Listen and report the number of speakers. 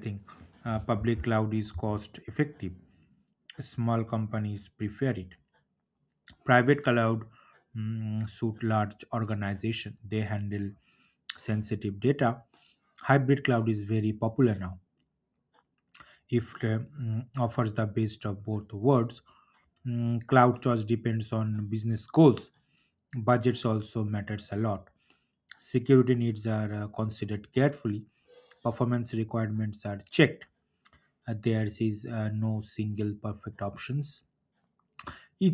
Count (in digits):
1